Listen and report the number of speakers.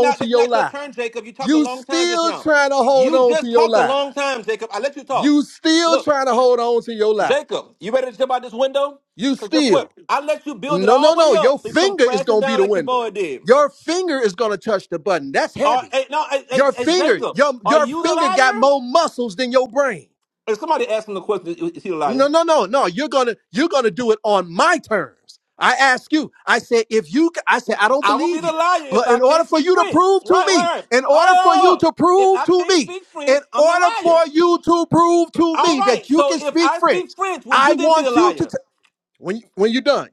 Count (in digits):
2